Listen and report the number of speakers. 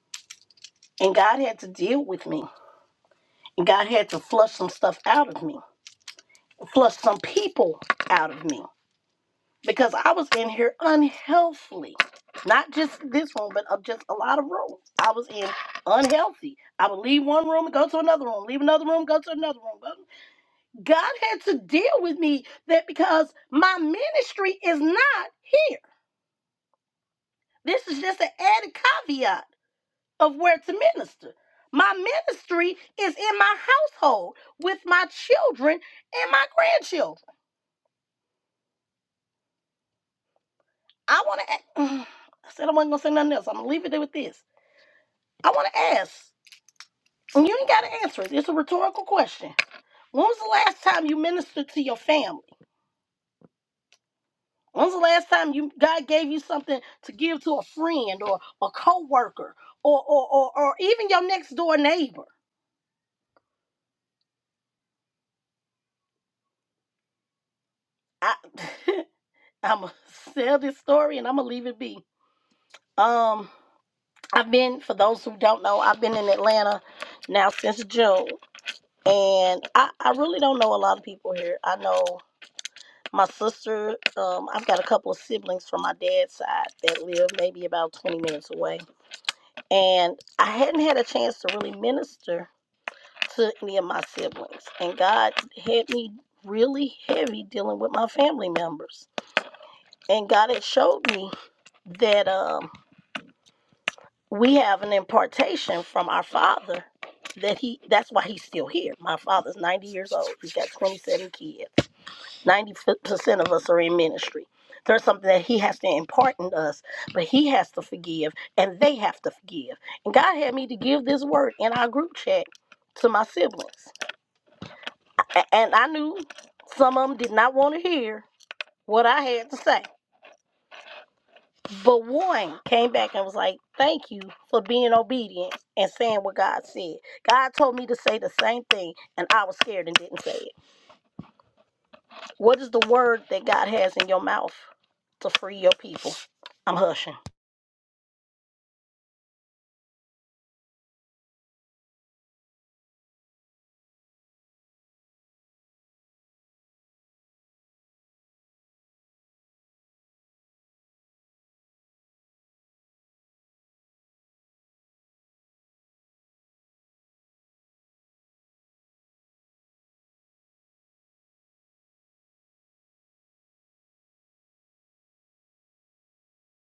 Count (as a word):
one